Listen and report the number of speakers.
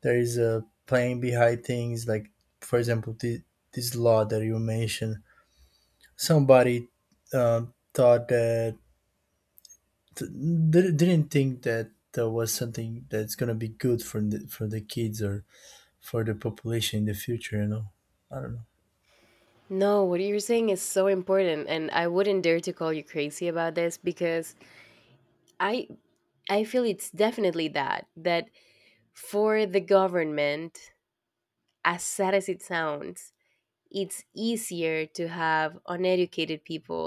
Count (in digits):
2